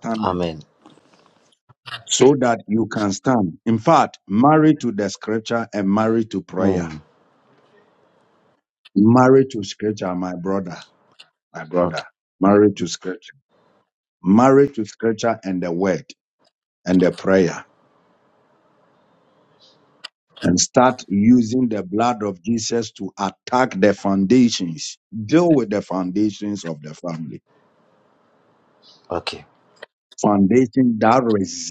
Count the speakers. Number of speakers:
two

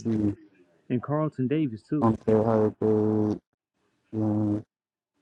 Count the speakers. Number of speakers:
two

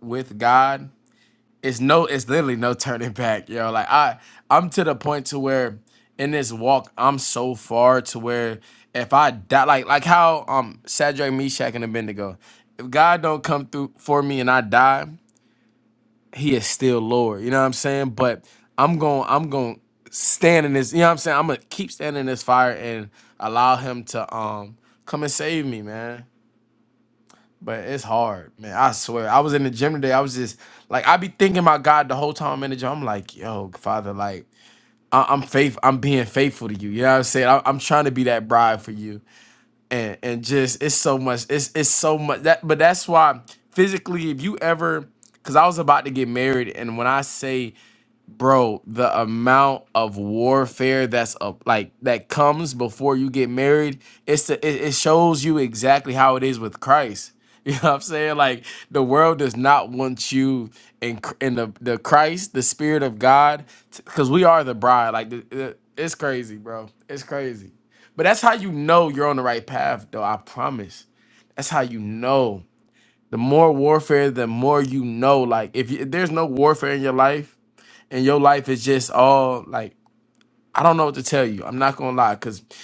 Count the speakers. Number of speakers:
one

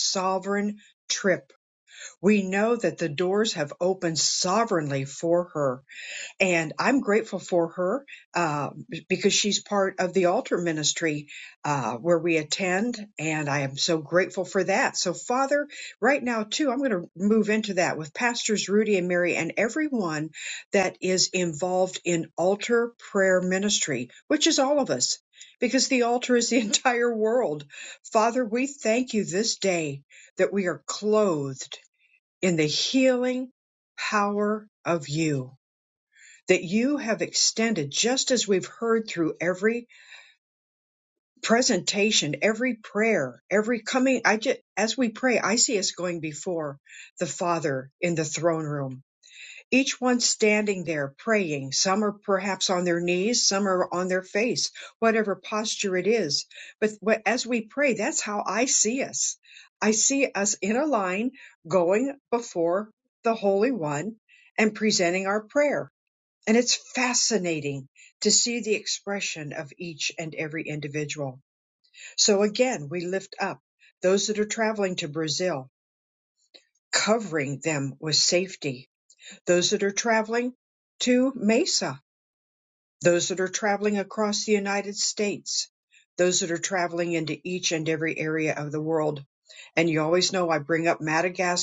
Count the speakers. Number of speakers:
one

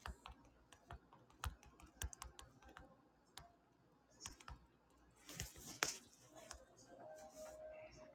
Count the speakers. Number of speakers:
zero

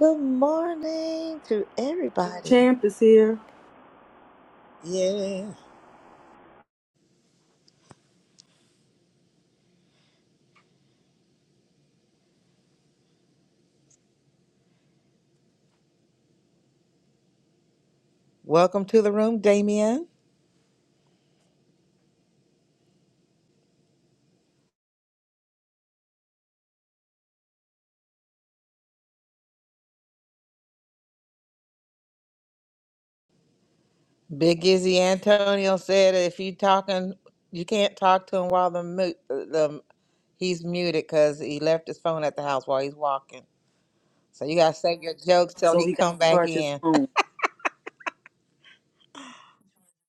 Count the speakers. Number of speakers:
three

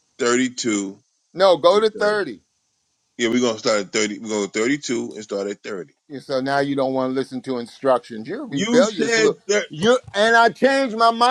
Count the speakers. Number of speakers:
two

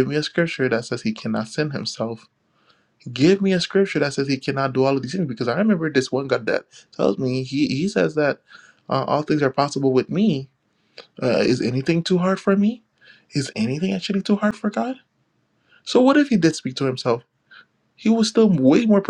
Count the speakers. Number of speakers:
one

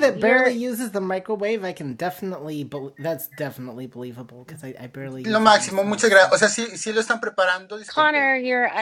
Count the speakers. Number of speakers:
three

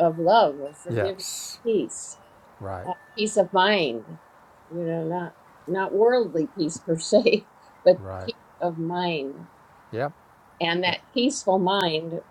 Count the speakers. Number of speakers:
two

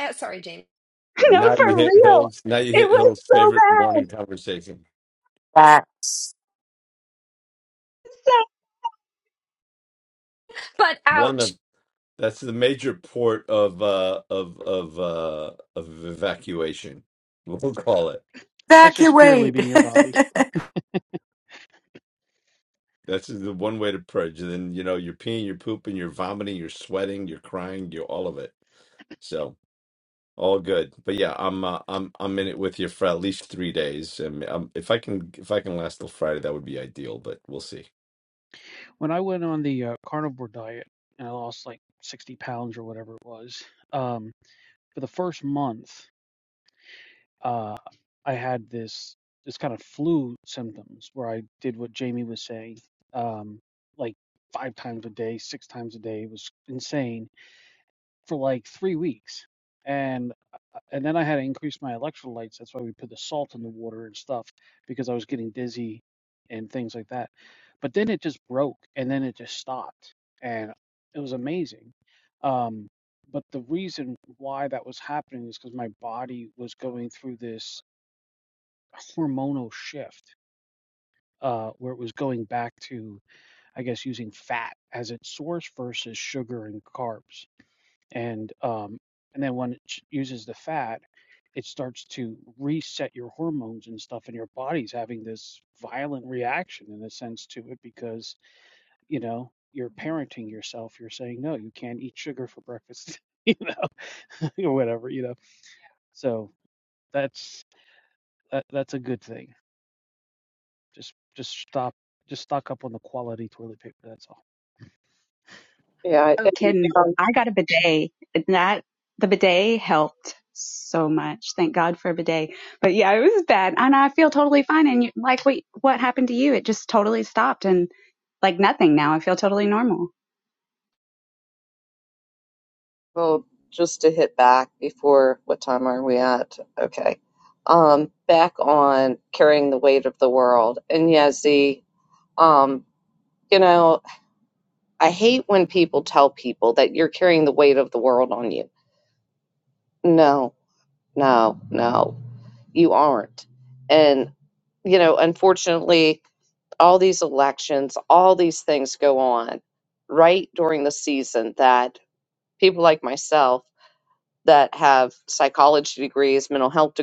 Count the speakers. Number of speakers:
six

